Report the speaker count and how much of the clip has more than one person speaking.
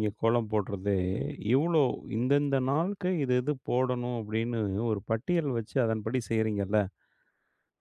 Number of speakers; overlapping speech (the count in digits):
1, no overlap